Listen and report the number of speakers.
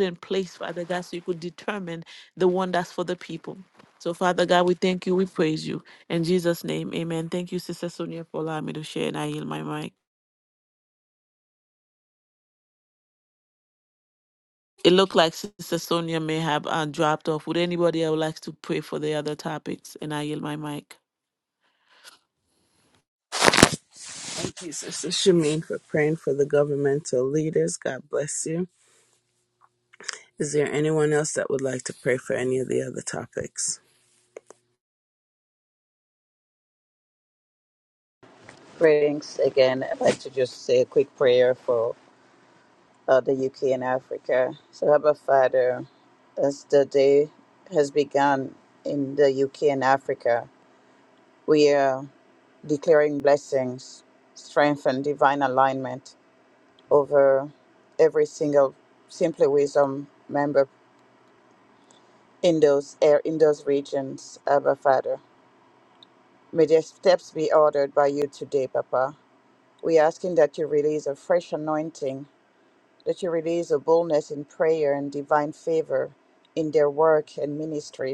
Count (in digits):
3